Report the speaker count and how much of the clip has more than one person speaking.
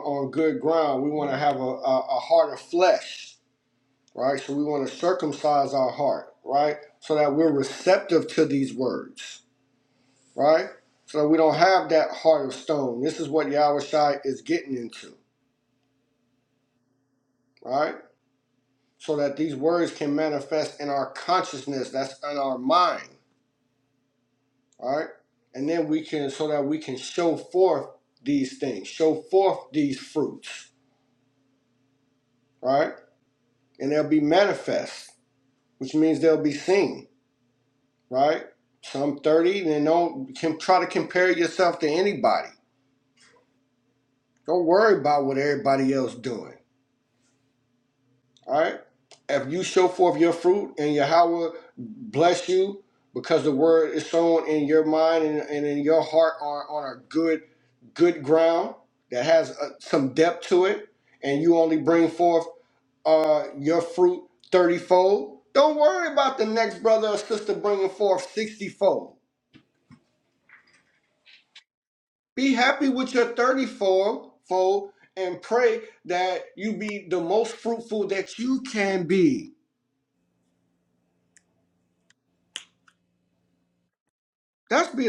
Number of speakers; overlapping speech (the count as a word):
one, no overlap